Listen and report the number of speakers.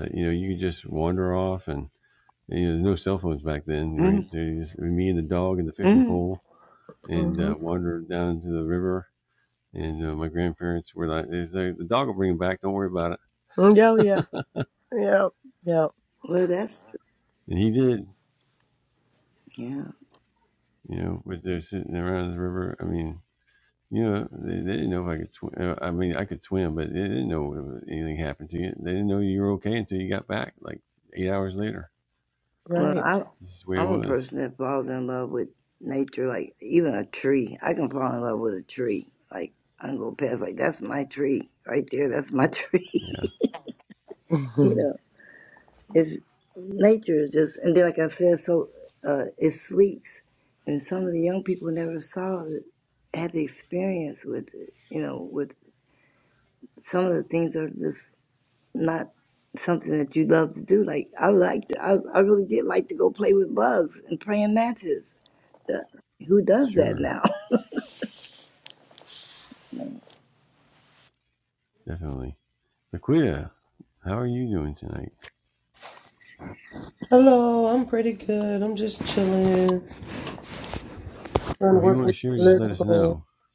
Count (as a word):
four